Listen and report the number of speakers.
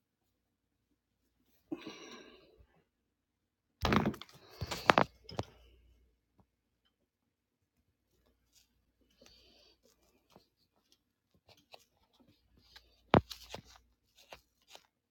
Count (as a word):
zero